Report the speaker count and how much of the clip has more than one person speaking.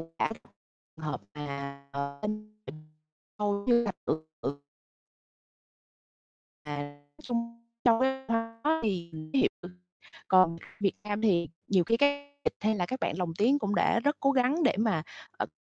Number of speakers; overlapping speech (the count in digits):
1, no overlap